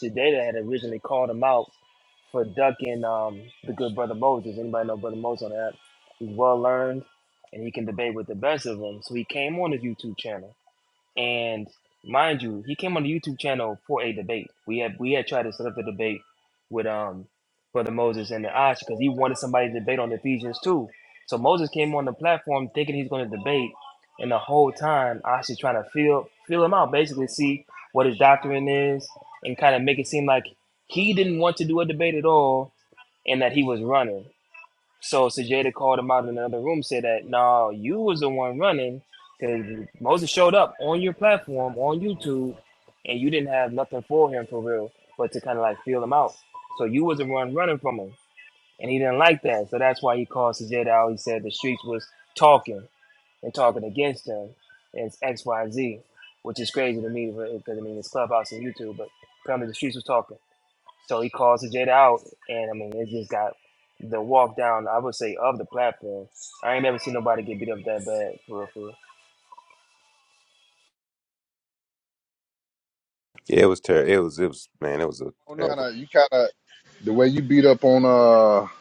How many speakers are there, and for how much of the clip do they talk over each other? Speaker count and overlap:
3, under 1%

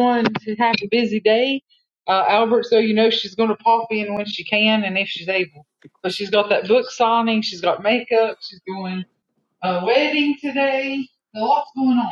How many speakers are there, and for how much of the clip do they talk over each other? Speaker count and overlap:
1, no overlap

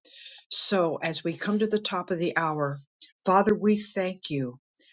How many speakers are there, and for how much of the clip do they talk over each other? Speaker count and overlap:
1, no overlap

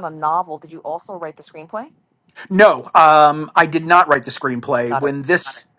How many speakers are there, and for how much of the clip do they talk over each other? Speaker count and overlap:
2, about 3%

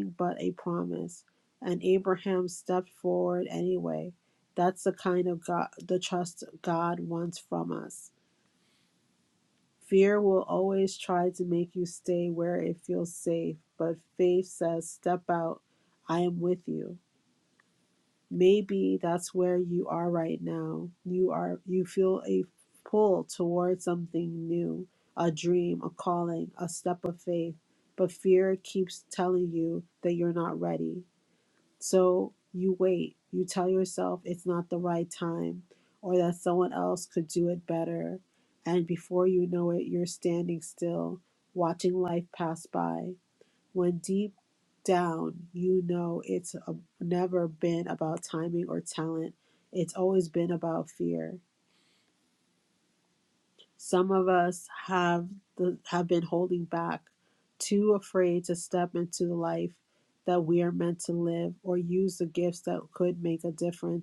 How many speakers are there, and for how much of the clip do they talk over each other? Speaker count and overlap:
1, no overlap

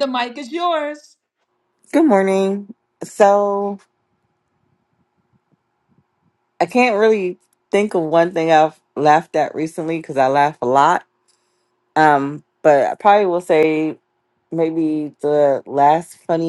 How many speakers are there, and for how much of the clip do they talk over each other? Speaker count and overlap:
2, no overlap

